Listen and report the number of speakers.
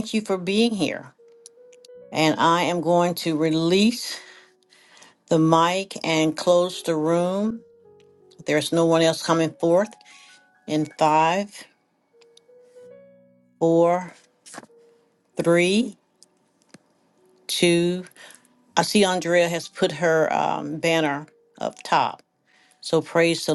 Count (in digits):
1